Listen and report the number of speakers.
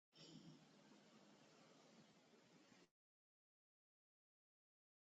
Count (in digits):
0